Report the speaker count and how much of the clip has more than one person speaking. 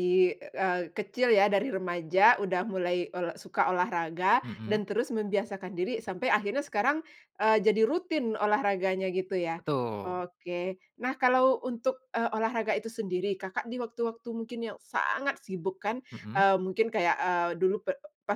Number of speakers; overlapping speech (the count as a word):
two, about 3%